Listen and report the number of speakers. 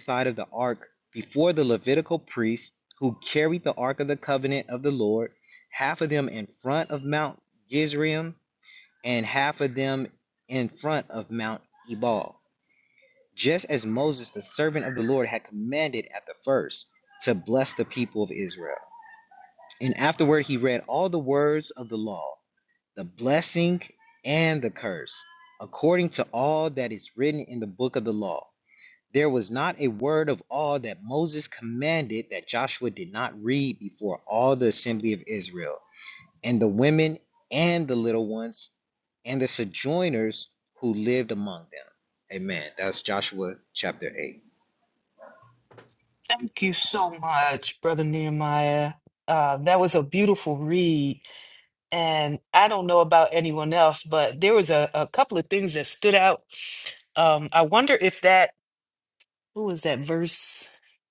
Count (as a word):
two